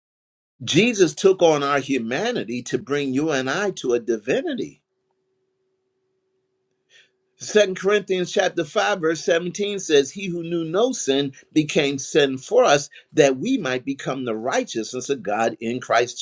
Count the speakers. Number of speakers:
1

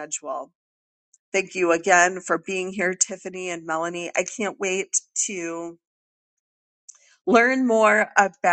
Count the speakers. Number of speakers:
1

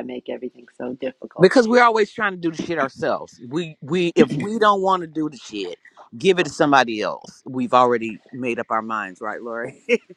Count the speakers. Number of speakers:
2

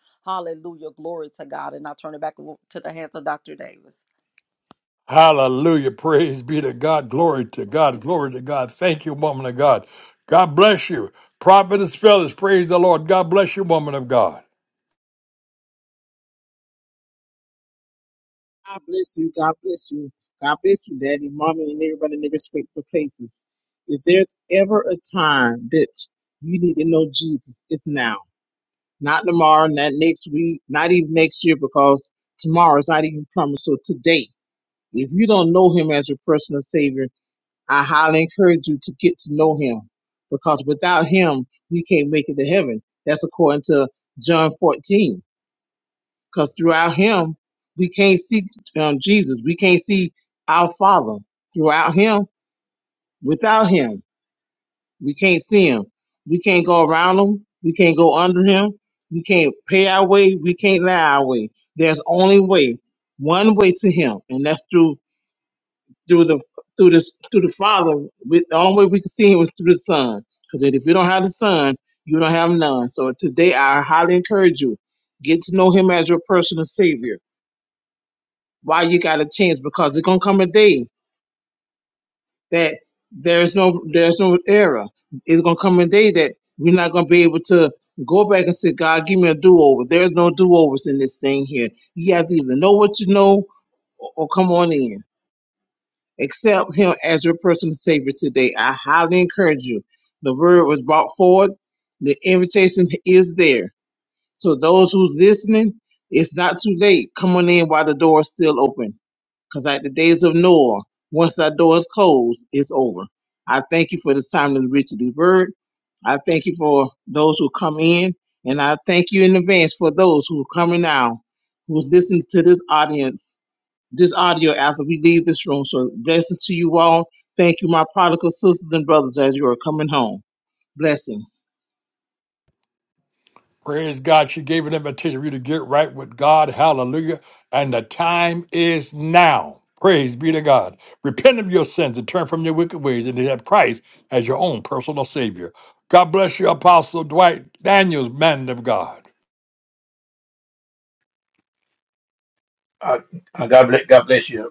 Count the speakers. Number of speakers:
4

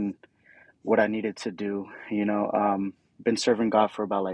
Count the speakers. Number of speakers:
1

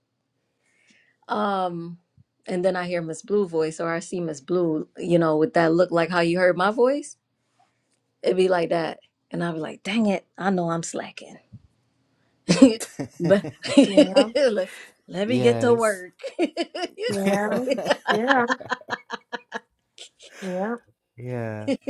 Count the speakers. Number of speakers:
3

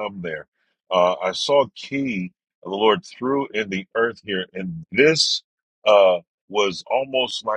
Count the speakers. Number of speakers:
1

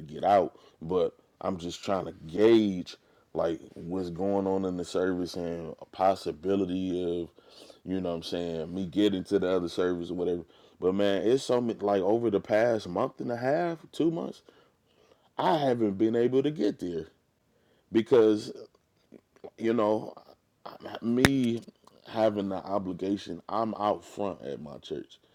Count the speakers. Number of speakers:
1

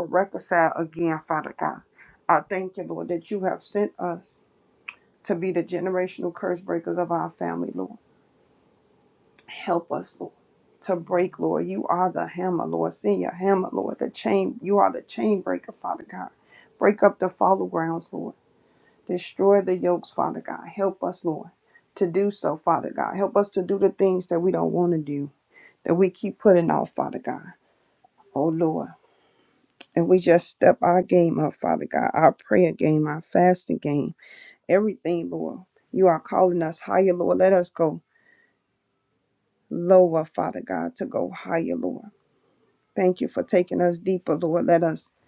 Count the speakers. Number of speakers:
1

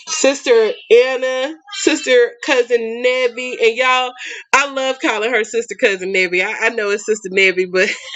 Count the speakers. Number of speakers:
1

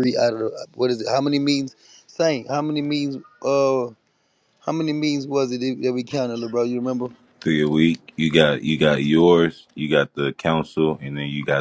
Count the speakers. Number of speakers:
2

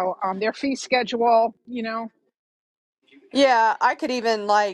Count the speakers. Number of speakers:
2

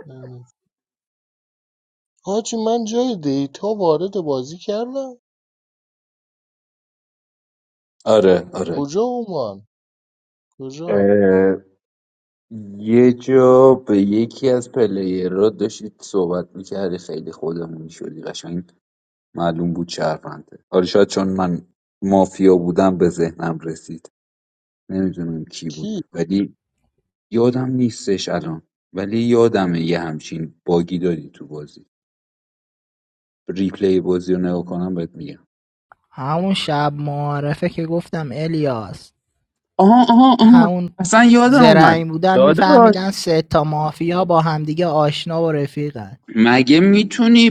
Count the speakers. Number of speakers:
3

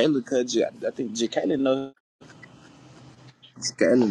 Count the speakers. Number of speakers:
1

